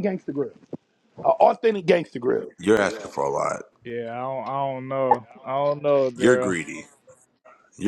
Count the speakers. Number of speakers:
three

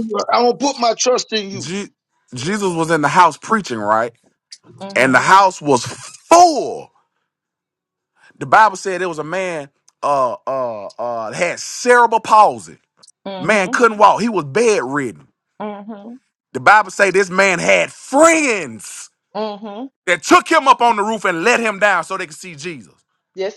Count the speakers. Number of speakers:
three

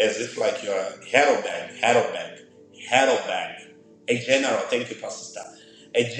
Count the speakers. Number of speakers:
one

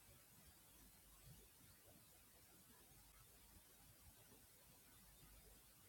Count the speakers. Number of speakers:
zero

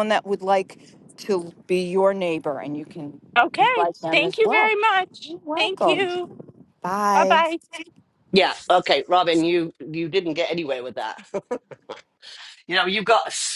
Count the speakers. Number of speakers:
three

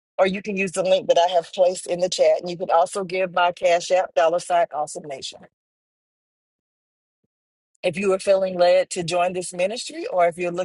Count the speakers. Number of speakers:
one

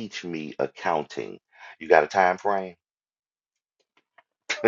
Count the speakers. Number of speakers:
one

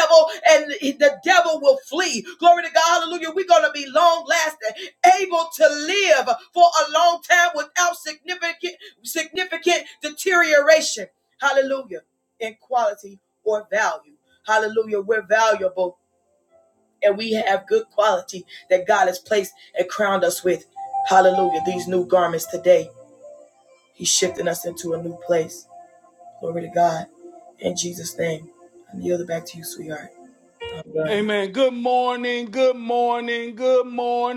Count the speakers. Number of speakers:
two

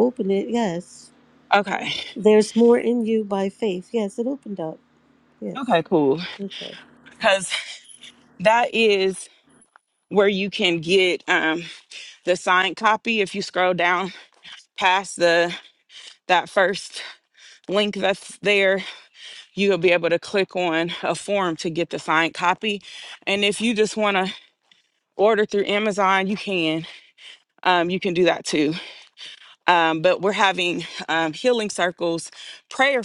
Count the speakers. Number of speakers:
two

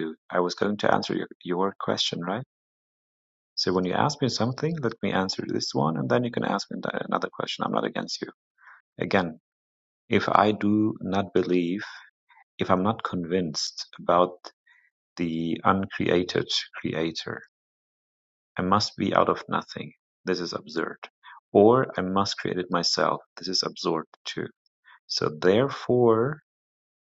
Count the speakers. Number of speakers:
one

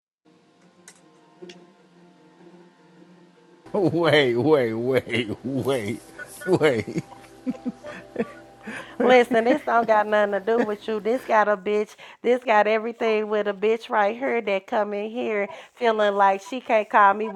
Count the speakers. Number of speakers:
two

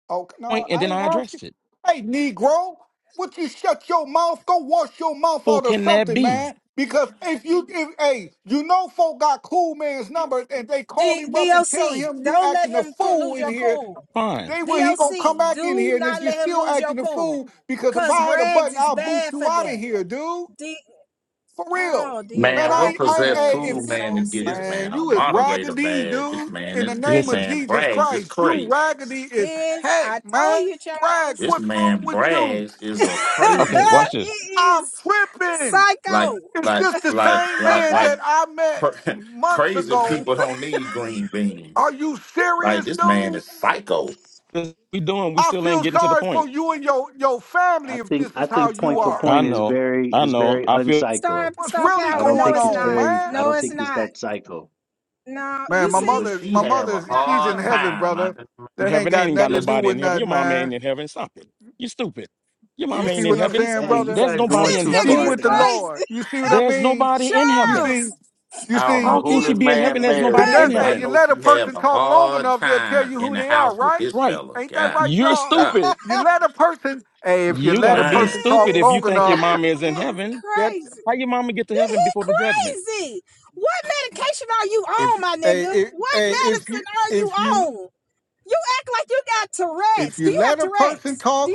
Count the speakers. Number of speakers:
five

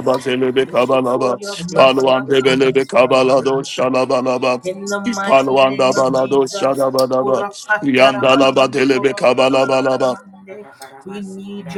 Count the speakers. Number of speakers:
two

